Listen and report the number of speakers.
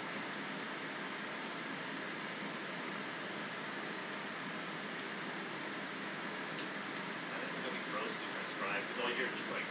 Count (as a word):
one